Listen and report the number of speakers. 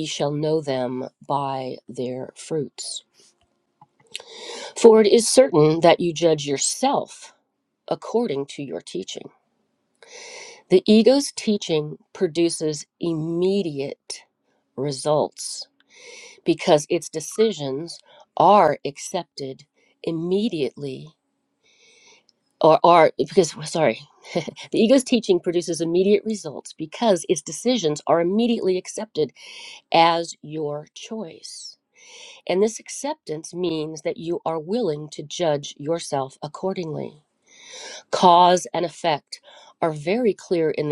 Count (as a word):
one